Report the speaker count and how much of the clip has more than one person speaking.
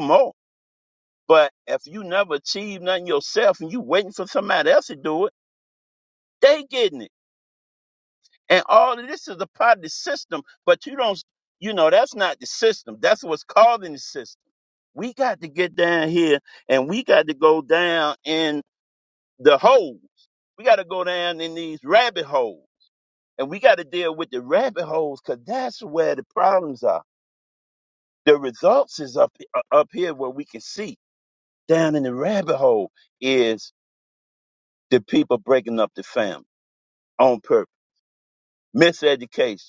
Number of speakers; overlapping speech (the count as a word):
one, no overlap